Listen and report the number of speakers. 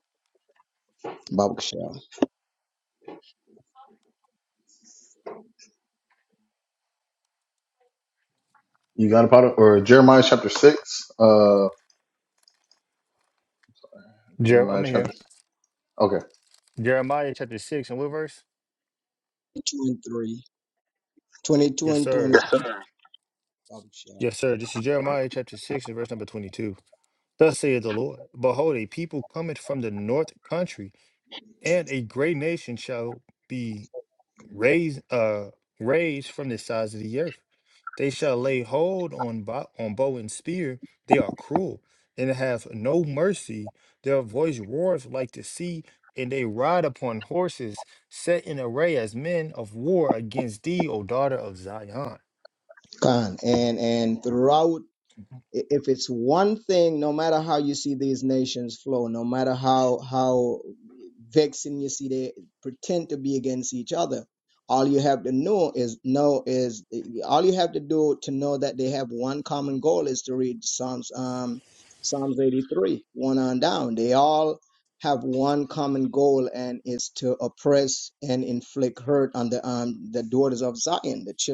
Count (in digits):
3